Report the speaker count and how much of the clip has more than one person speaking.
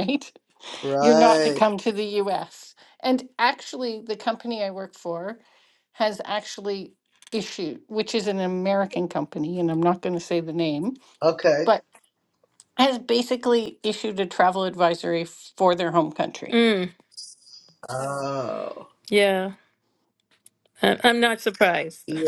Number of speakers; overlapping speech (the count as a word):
three, about 4%